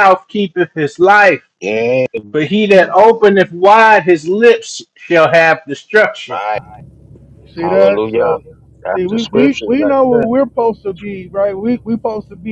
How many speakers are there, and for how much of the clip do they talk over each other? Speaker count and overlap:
3, about 17%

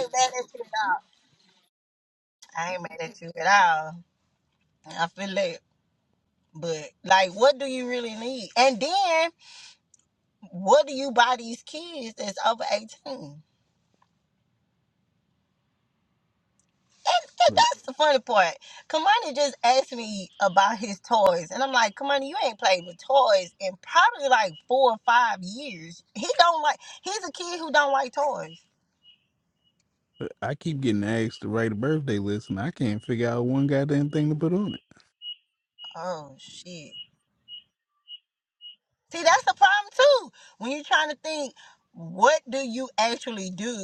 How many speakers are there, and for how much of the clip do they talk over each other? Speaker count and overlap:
2, under 1%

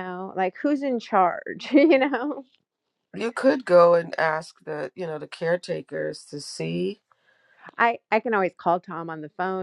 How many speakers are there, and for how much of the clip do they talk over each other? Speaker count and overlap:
2, no overlap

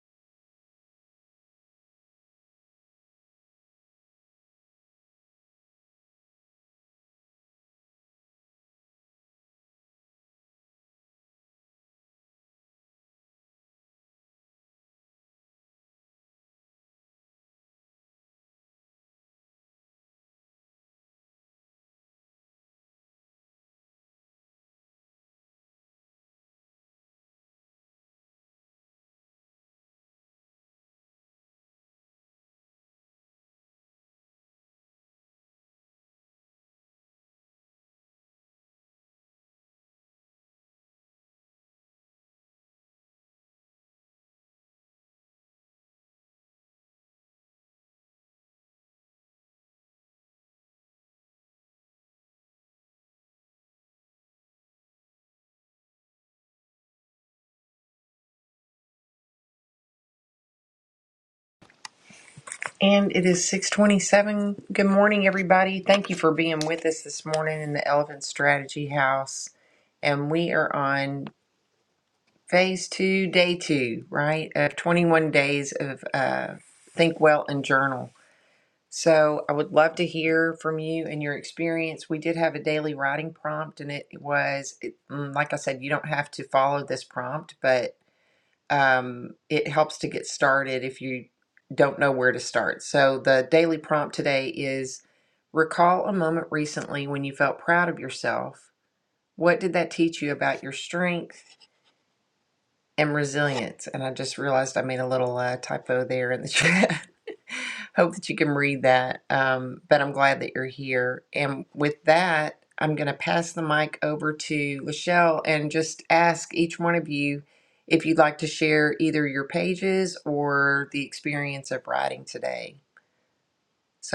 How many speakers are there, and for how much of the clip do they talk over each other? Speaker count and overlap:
1, no overlap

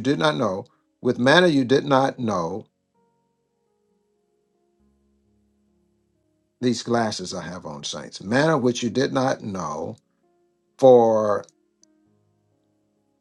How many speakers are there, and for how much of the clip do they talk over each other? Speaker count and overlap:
1, no overlap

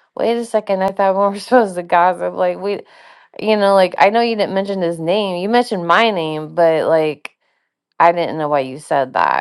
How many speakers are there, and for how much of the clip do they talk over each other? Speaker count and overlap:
1, no overlap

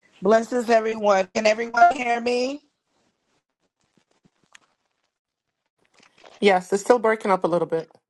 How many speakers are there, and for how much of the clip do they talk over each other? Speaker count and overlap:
2, no overlap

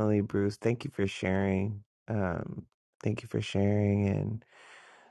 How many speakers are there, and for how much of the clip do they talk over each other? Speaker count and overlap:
1, no overlap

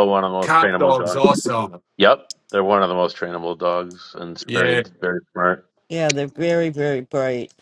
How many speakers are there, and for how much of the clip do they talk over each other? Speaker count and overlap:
3, about 16%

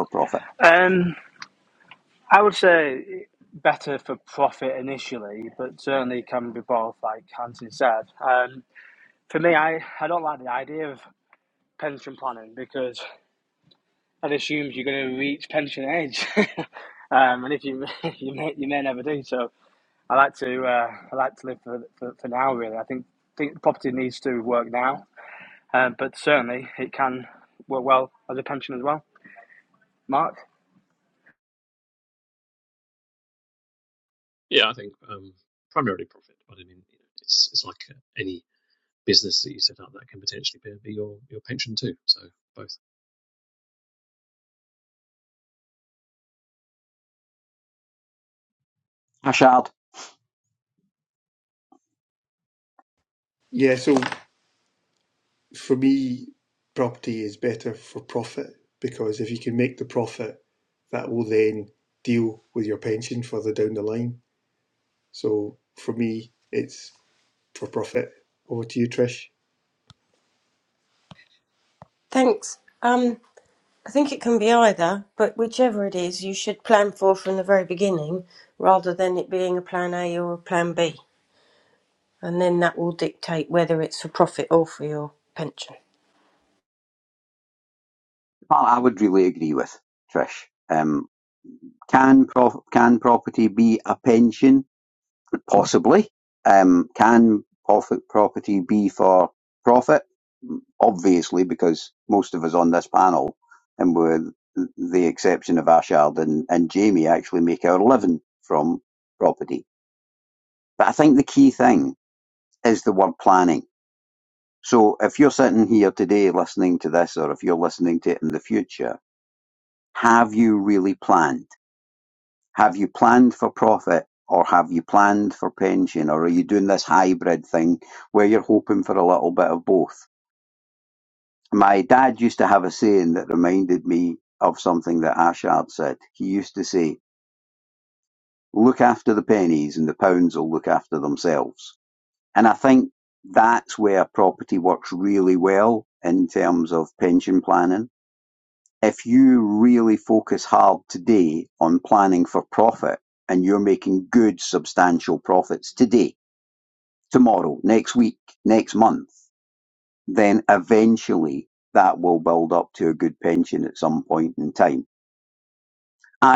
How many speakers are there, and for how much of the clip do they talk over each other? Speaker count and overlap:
5, no overlap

